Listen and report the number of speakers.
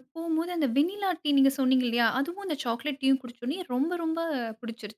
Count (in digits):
1